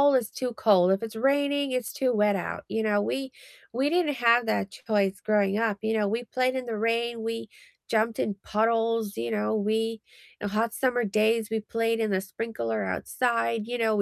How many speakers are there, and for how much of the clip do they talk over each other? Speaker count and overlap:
one, no overlap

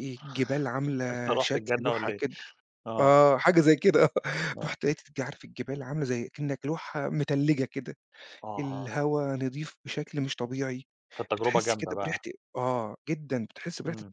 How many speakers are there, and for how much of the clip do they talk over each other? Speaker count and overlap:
two, about 20%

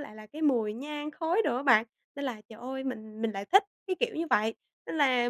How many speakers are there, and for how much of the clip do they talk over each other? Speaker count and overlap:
one, no overlap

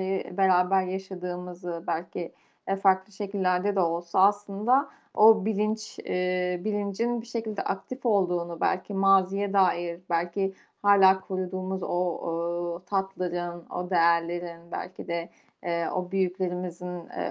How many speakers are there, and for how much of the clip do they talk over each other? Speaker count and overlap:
one, no overlap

